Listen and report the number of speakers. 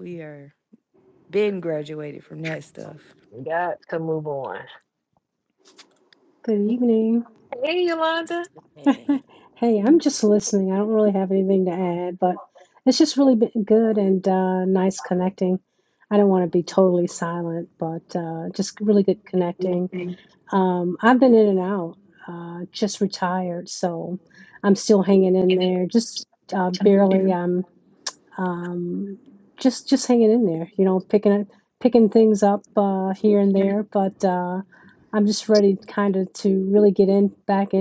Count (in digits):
3